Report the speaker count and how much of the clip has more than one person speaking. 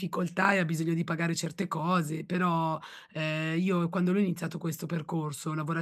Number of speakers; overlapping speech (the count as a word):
one, no overlap